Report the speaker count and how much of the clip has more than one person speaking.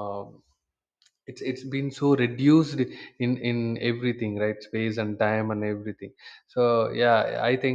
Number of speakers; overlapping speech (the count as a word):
one, no overlap